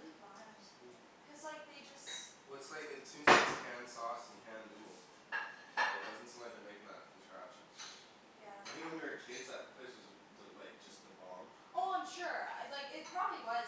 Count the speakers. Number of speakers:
two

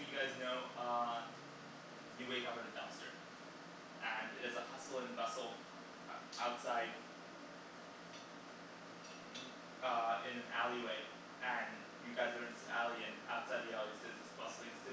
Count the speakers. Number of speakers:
one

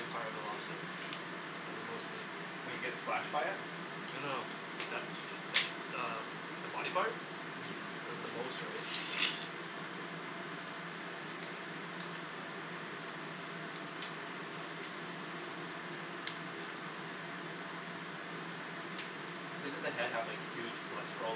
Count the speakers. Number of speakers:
two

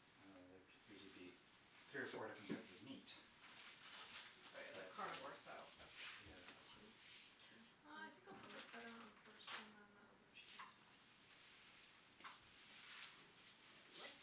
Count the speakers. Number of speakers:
three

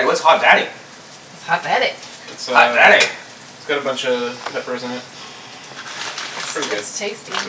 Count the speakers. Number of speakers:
three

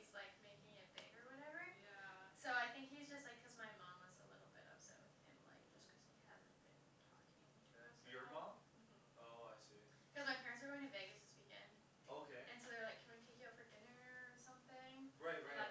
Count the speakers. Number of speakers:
three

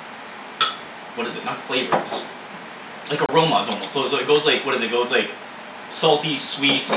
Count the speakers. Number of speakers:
one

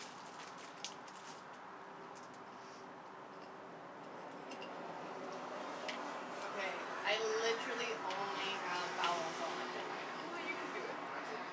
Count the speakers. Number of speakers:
two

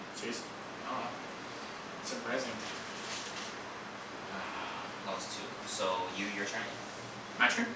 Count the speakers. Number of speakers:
two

